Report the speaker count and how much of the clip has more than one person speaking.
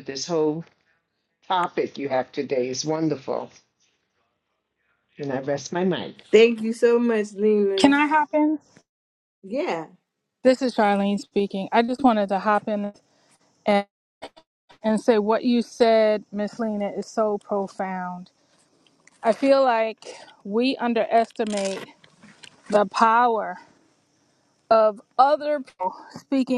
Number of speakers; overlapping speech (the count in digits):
3, under 1%